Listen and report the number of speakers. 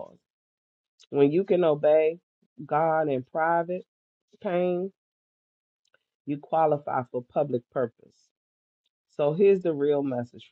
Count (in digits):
1